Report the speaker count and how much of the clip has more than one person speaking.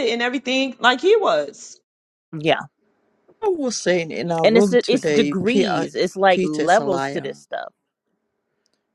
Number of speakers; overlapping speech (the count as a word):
three, about 28%